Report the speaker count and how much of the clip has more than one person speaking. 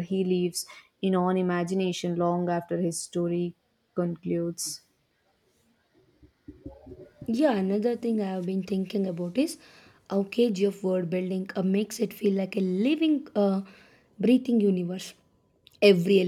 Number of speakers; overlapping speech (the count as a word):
two, no overlap